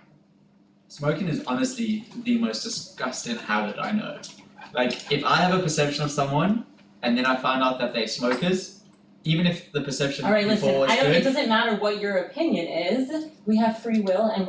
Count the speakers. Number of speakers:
2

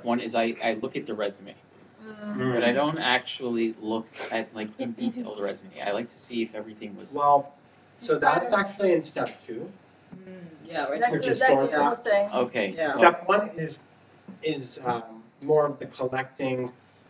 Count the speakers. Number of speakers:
4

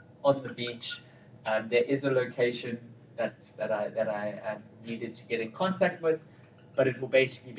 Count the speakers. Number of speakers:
1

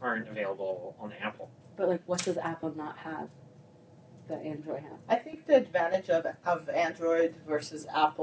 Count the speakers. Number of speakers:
3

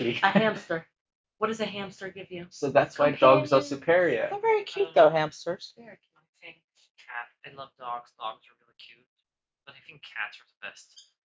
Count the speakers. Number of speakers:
4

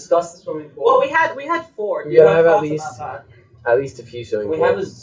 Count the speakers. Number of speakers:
3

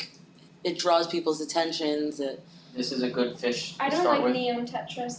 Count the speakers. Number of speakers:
3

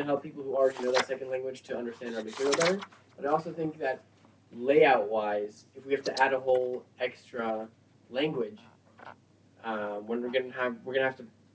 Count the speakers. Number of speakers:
1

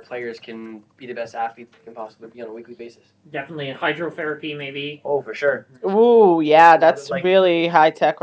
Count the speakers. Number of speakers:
3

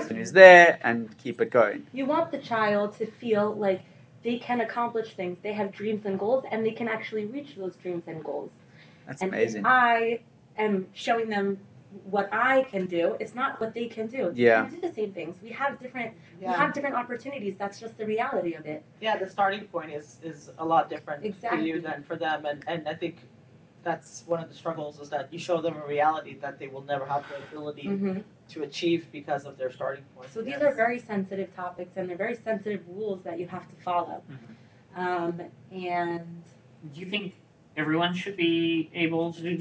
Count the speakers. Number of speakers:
4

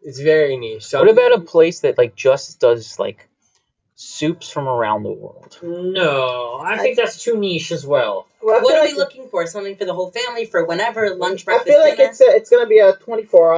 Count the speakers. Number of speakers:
5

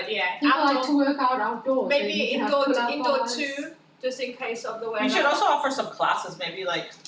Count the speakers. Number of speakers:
3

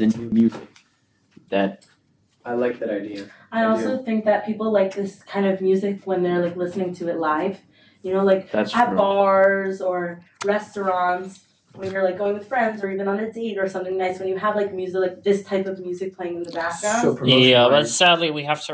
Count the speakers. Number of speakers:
4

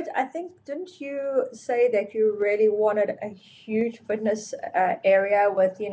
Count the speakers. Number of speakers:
1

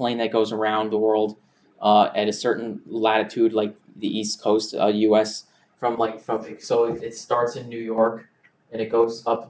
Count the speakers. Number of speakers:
1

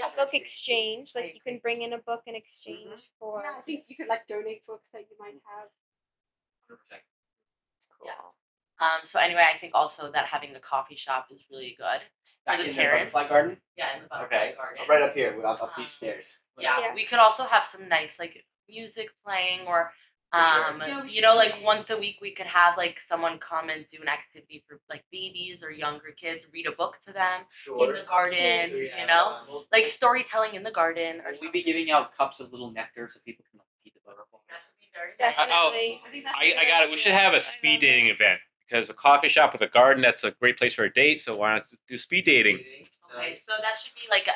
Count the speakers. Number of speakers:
6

